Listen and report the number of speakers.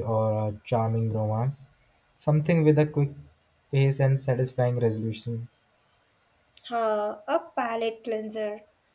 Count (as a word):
two